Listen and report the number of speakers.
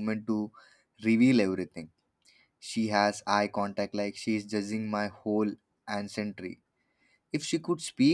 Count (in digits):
1